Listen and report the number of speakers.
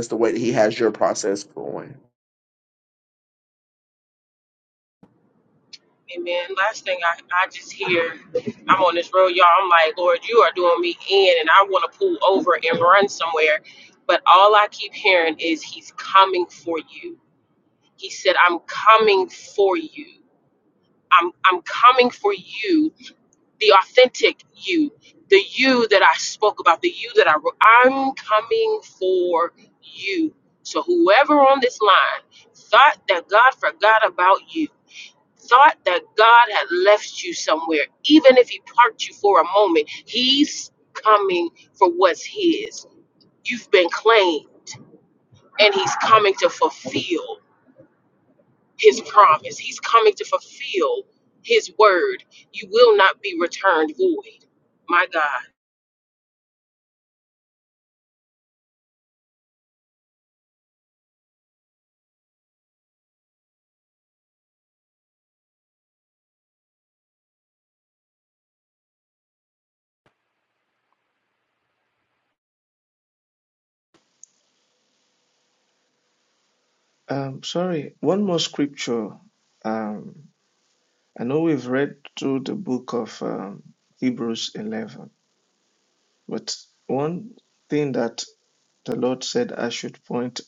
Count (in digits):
3